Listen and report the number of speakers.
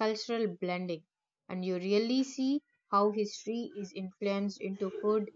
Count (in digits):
1